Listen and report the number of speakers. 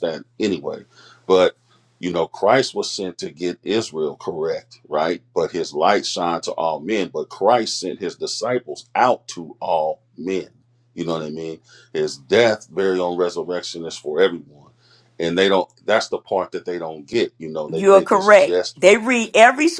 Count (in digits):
2